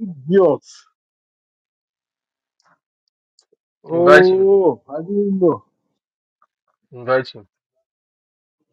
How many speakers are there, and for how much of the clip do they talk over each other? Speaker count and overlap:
2, about 6%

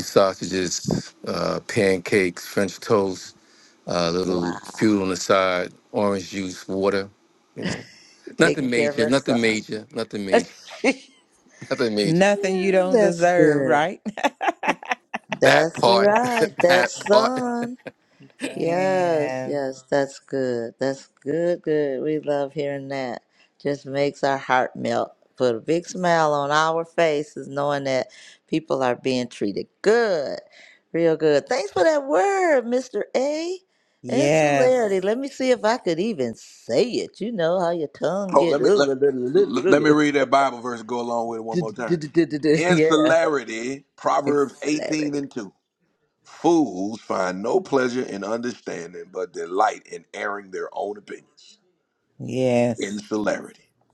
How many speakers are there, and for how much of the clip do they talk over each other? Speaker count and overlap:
4, about 15%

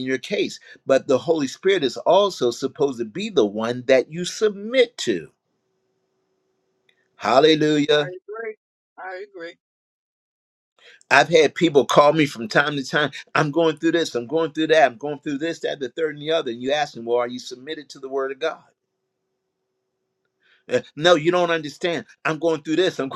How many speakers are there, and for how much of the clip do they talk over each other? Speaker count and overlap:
2, about 1%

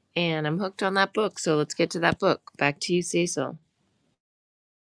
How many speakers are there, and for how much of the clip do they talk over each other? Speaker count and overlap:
1, no overlap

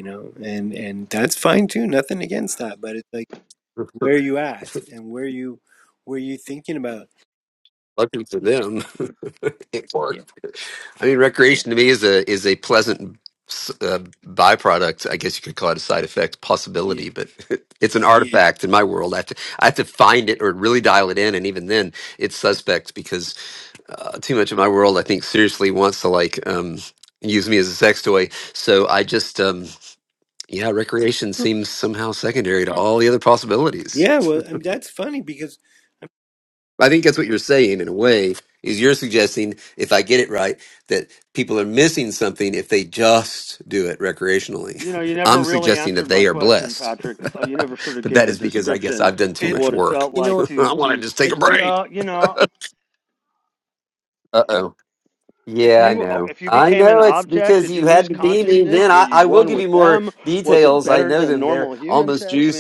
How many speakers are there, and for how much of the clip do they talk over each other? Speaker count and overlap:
3, about 20%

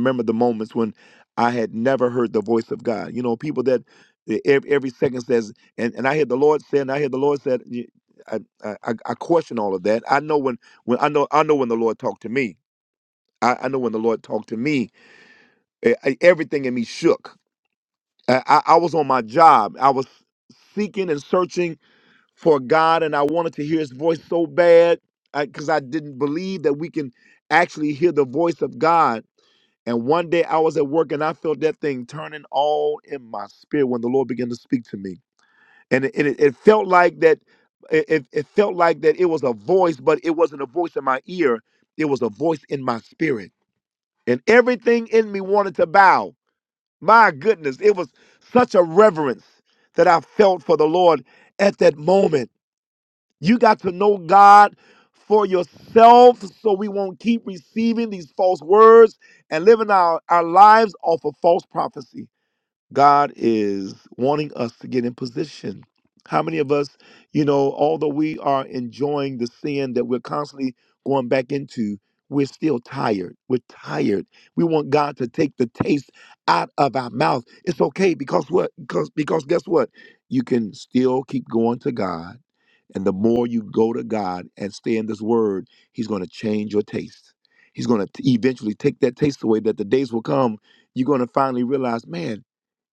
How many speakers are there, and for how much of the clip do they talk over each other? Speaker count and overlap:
1, no overlap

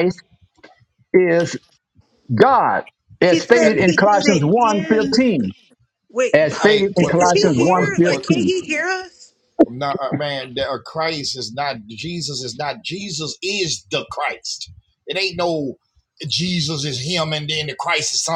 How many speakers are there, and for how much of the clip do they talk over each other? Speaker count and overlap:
3, about 21%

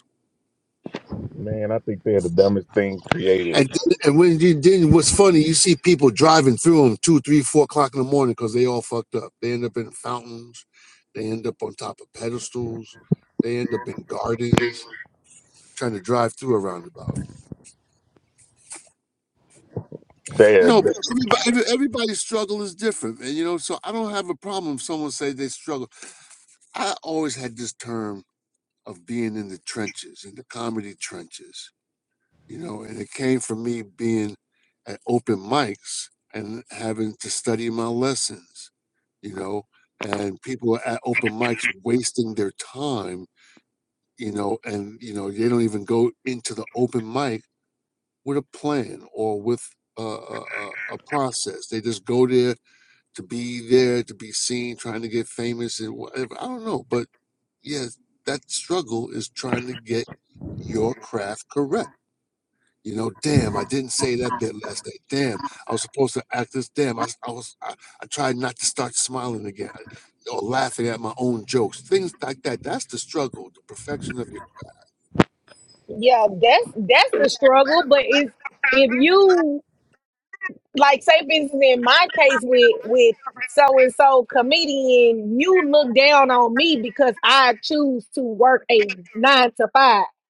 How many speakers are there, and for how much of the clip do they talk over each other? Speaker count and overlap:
3, under 1%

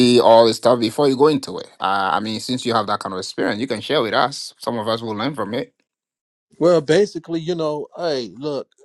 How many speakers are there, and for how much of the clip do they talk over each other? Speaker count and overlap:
2, no overlap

